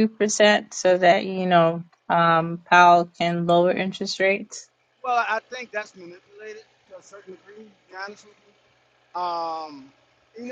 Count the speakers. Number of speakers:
2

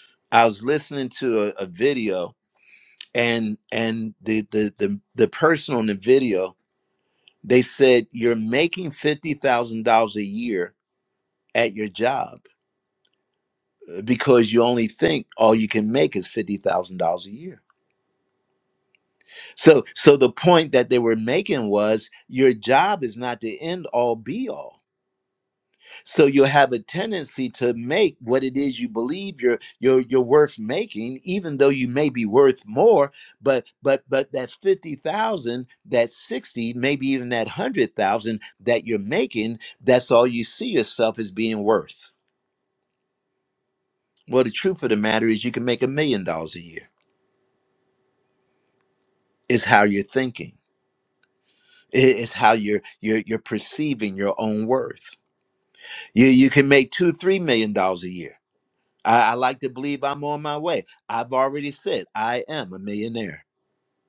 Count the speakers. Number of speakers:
1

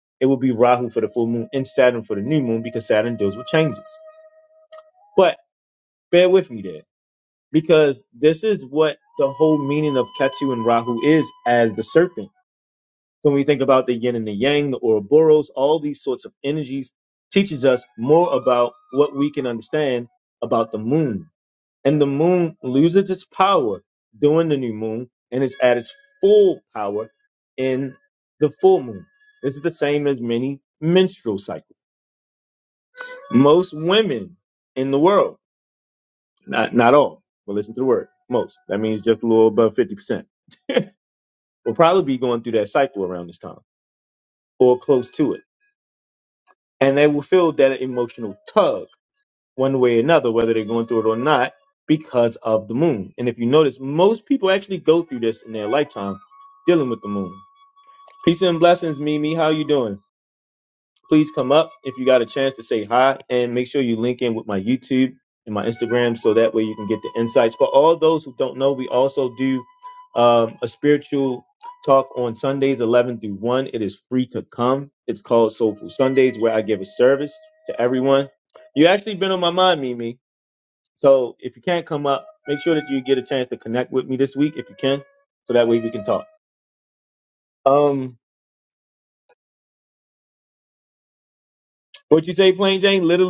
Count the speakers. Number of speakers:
1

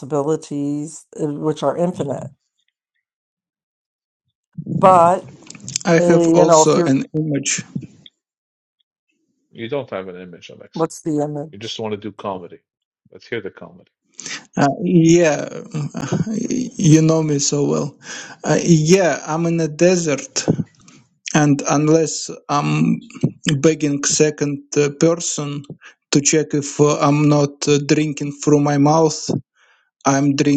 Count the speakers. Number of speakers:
3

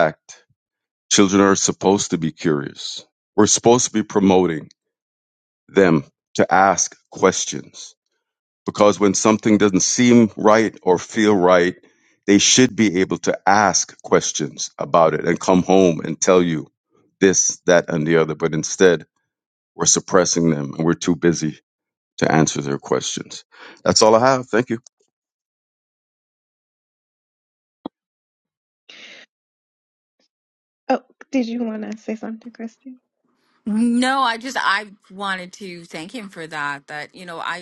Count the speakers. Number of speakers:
3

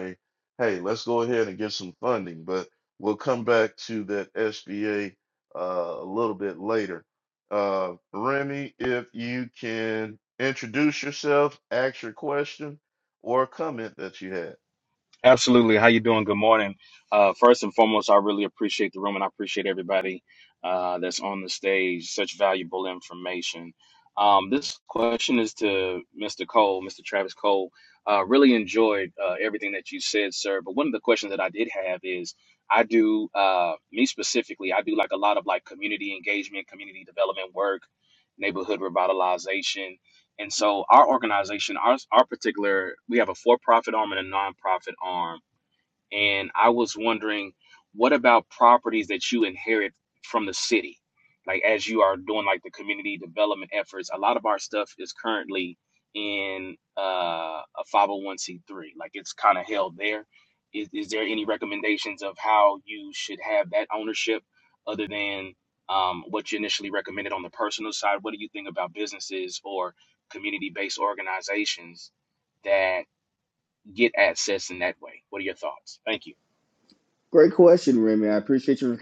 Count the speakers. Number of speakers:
3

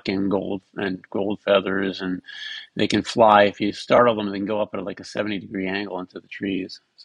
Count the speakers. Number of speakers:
1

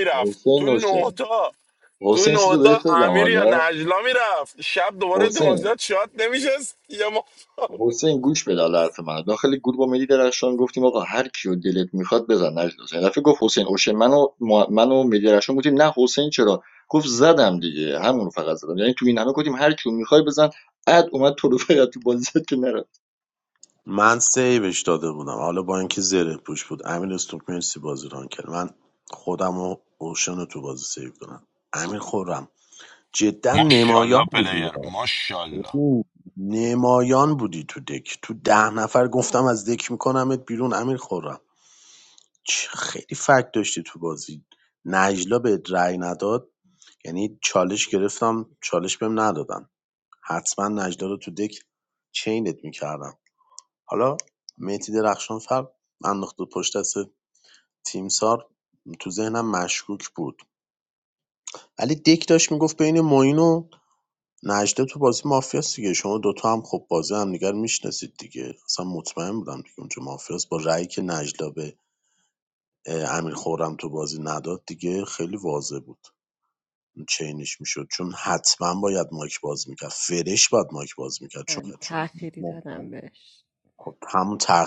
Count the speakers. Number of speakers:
4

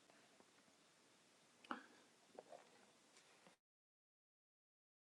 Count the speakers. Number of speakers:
0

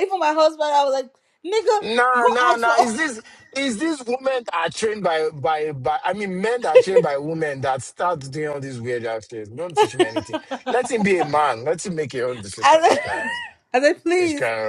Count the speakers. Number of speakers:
2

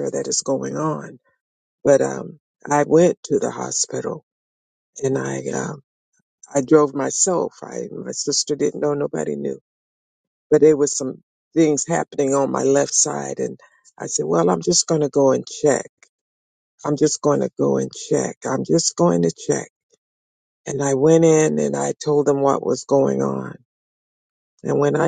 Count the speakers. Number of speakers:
1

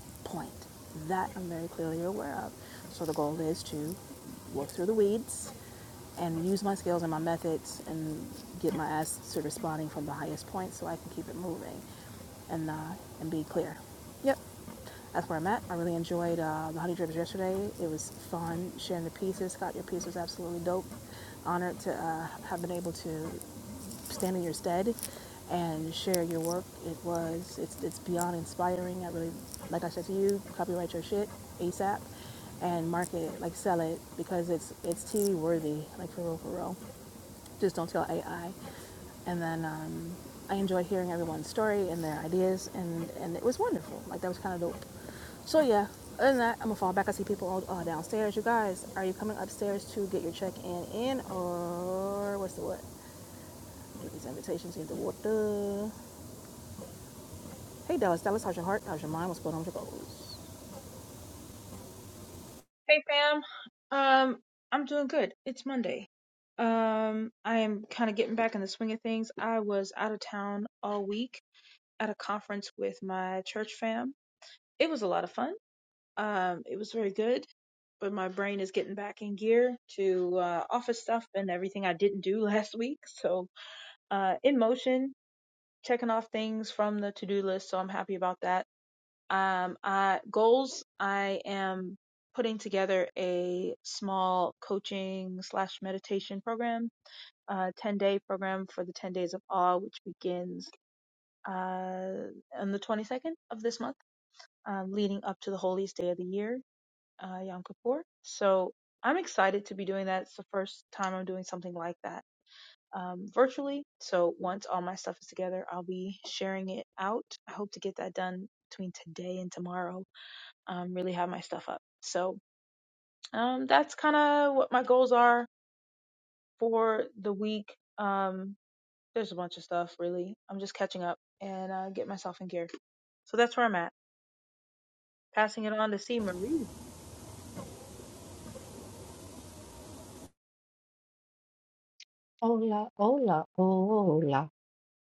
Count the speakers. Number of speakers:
3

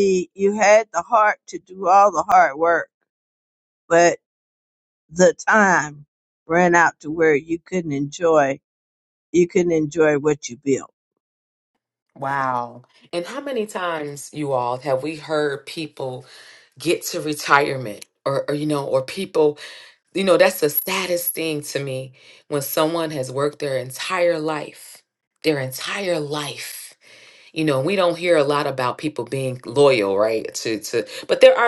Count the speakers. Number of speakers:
2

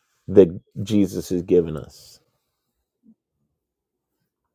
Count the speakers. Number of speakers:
1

